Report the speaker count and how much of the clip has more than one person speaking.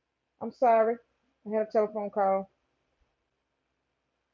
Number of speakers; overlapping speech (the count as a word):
one, no overlap